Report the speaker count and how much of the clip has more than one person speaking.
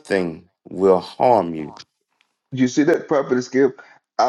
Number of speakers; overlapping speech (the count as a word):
two, no overlap